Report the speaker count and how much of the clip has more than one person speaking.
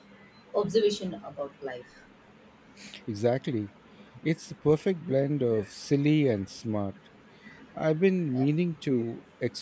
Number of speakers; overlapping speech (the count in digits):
2, about 1%